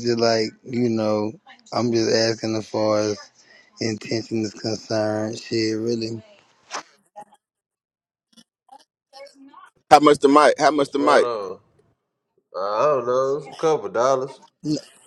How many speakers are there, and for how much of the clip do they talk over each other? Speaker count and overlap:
three, about 3%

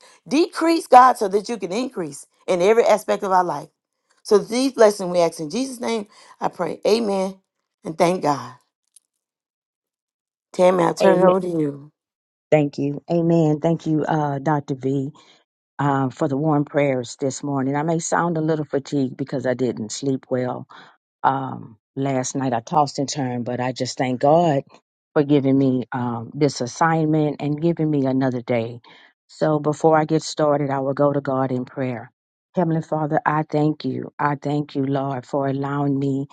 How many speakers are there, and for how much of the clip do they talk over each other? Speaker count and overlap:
two, about 1%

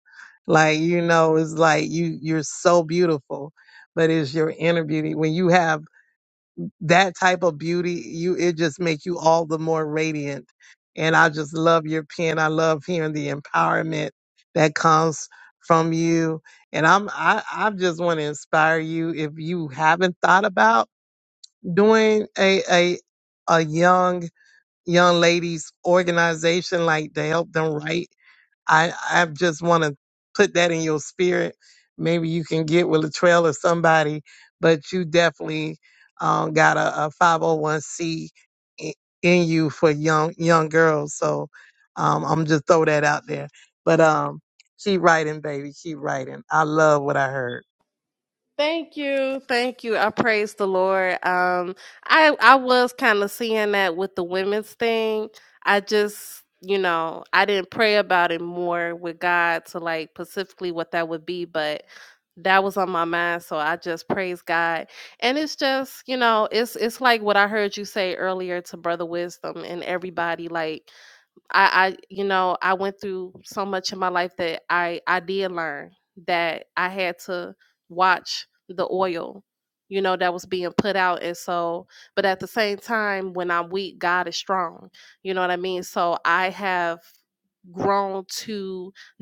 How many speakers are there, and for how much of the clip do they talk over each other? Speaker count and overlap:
two, no overlap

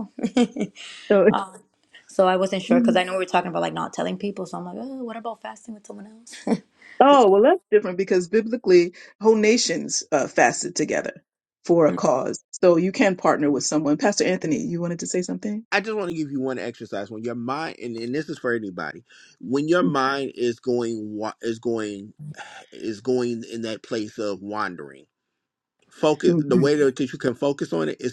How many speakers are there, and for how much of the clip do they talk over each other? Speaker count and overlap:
three, about 2%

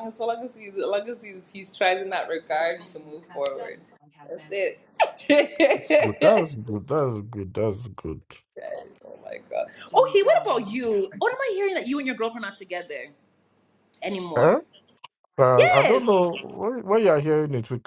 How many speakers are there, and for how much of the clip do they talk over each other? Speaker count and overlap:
two, about 4%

